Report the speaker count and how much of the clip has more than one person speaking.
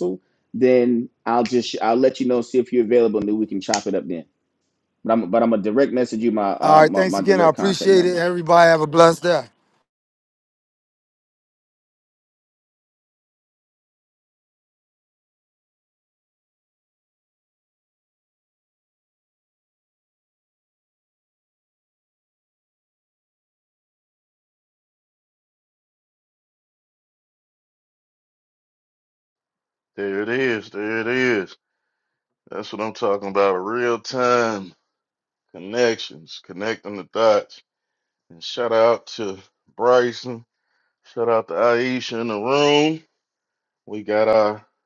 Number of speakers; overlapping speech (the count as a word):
three, about 3%